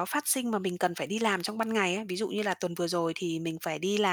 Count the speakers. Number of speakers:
one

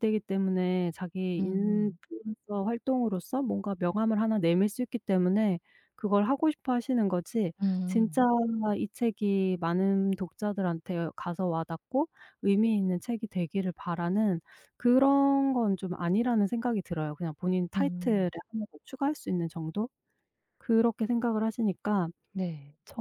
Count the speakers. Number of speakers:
two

